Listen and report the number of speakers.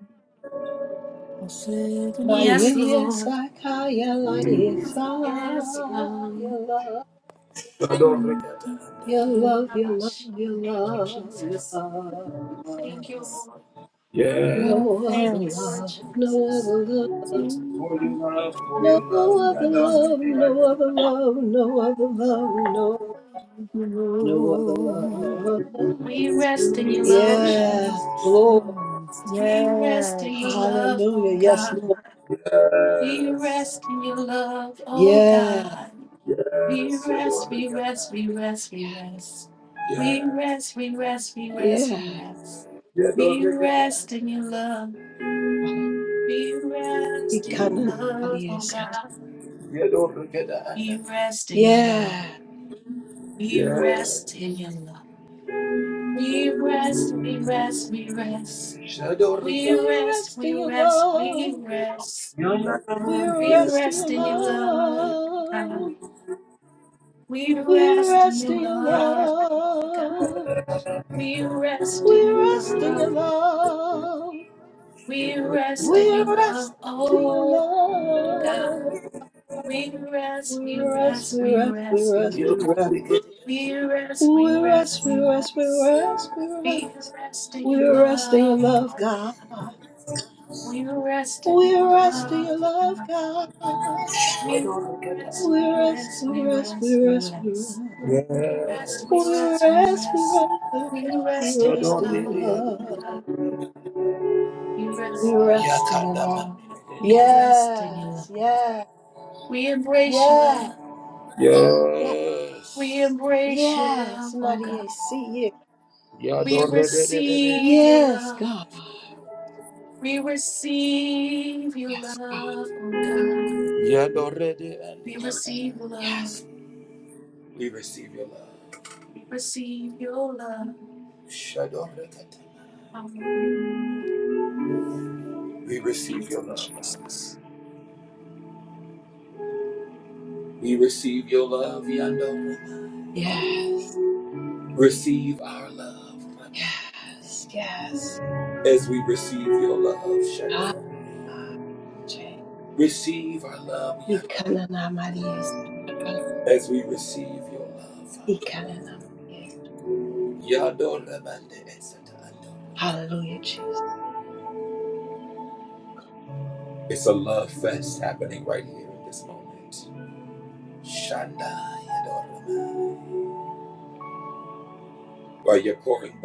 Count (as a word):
four